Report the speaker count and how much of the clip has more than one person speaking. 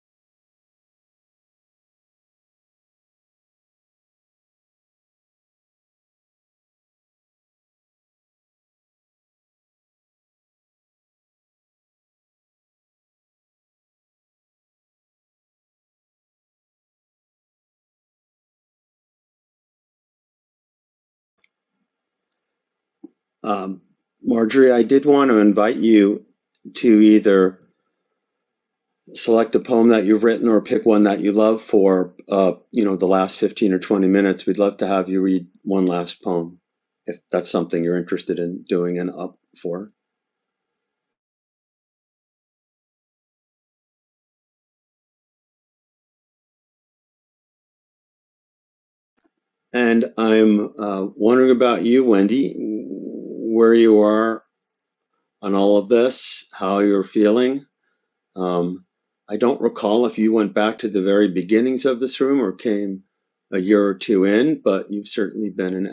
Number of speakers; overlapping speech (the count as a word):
one, no overlap